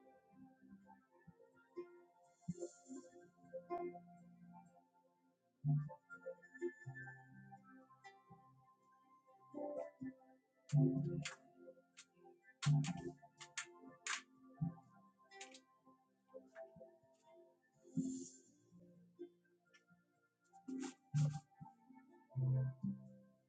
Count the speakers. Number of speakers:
0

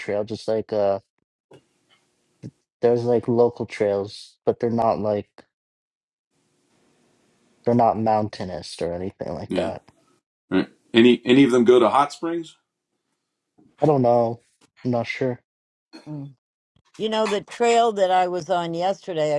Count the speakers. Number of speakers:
3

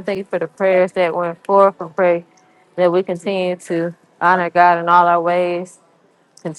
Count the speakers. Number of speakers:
1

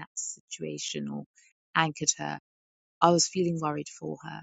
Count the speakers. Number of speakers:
1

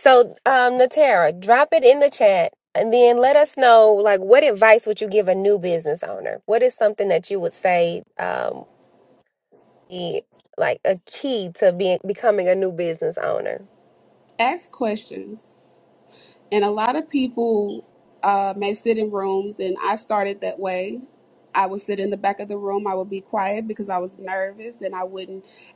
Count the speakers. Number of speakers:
2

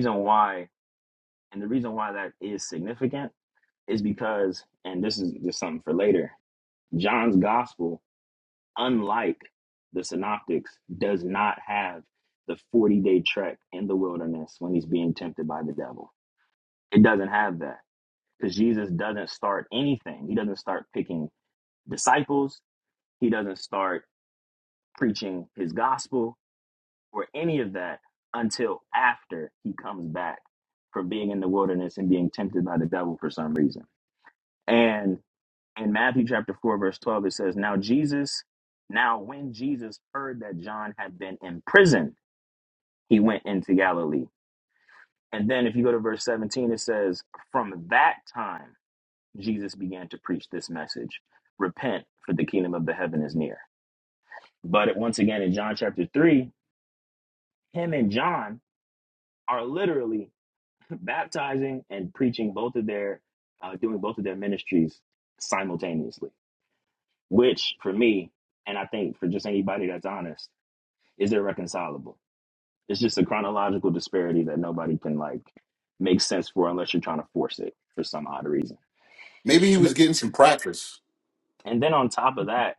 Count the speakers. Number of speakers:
2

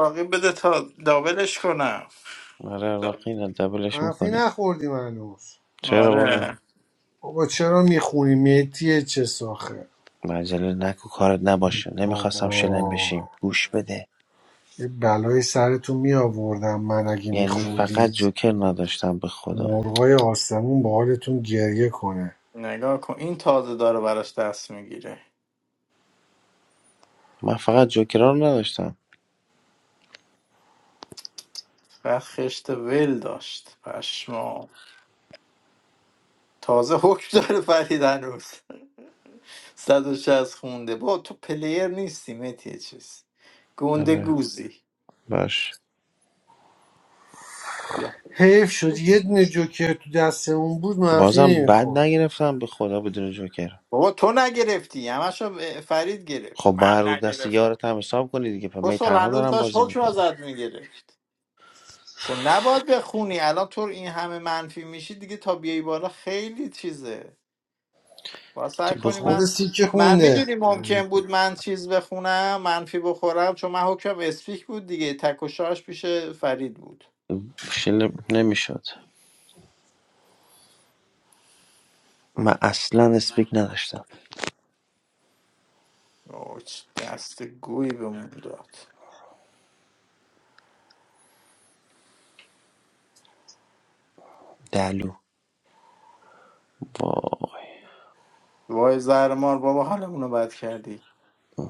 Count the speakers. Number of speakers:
3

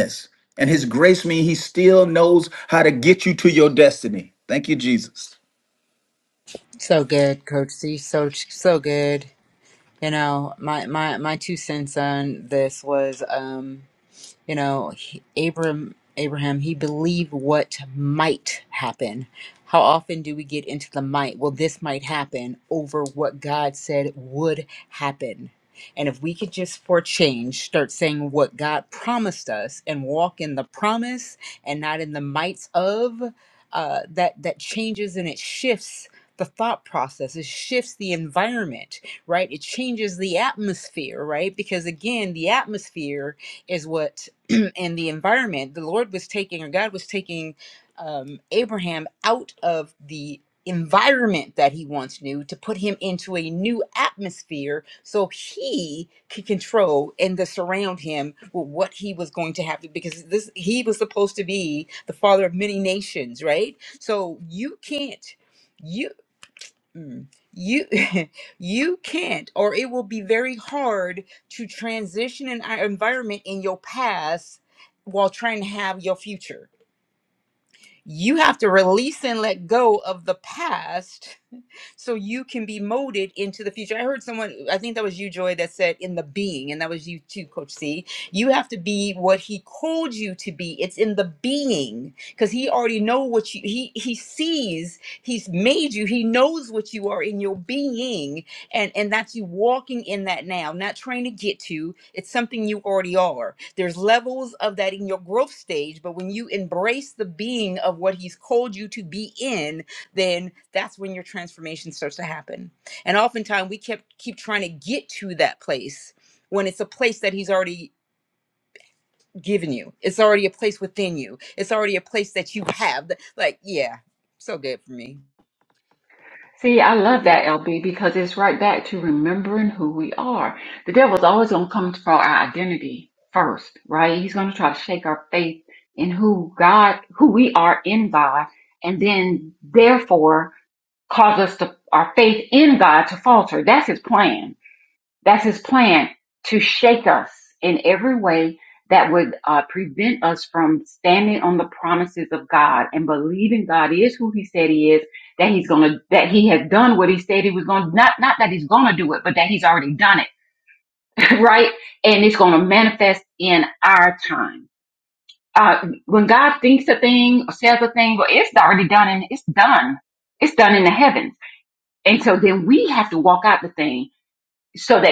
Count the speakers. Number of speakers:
3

